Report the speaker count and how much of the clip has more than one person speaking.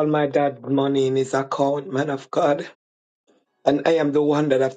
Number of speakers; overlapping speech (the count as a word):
one, no overlap